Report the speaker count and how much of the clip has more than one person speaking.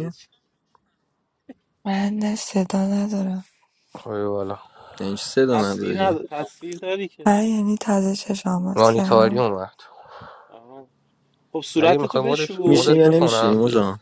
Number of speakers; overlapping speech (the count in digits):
4, about 25%